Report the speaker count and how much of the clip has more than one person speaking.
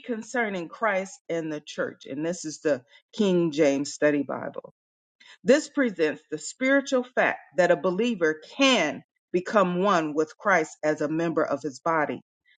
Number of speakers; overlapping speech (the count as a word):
one, no overlap